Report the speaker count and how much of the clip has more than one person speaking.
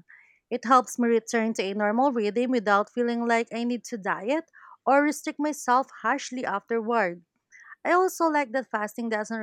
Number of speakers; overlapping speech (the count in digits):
1, no overlap